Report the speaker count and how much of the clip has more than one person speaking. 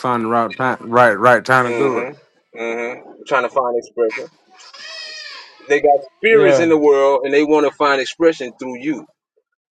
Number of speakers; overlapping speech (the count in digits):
2, about 9%